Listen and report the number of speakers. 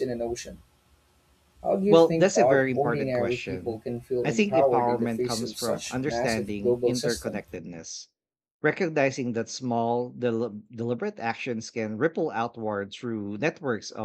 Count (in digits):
2